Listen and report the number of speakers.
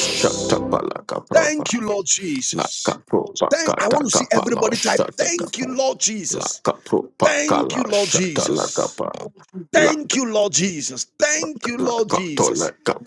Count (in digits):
2